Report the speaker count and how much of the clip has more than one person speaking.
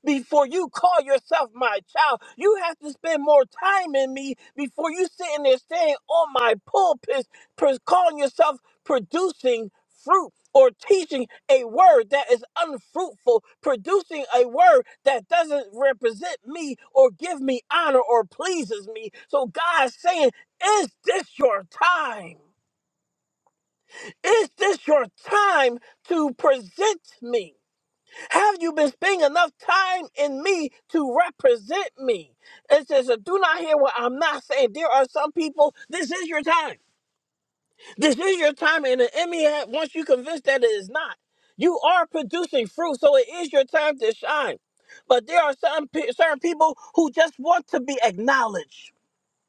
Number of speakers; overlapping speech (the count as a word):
one, no overlap